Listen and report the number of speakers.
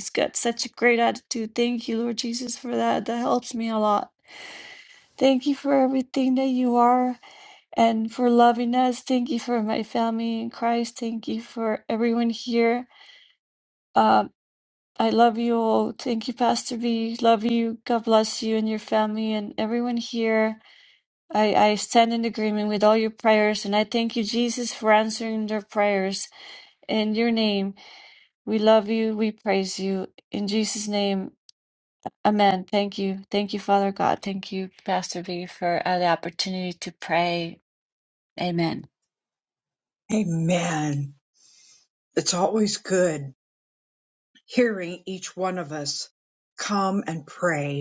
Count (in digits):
2